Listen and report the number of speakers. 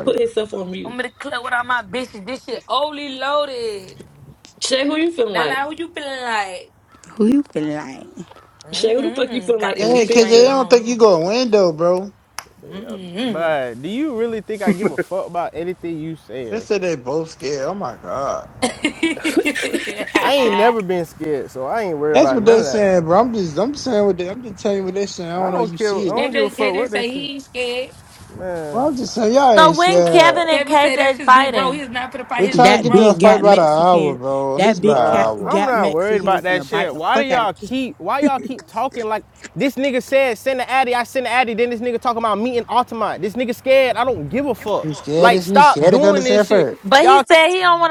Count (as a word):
six